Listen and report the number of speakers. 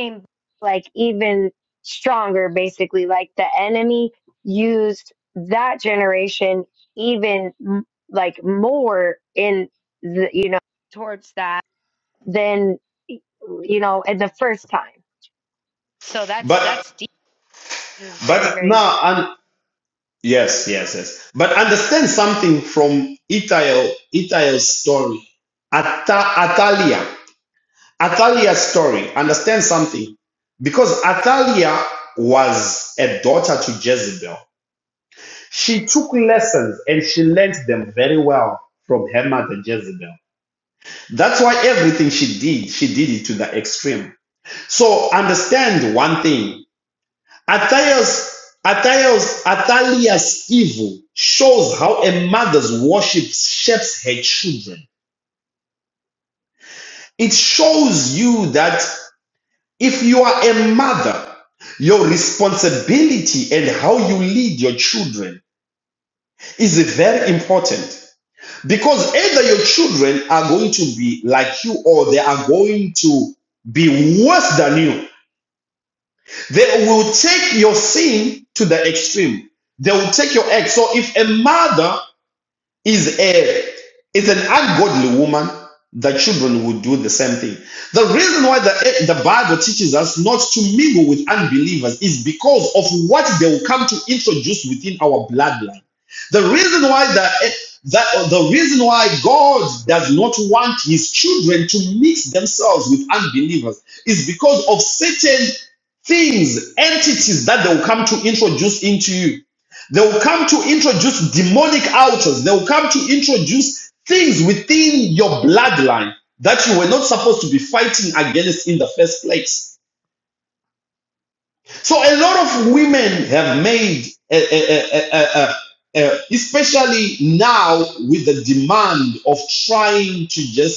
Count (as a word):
two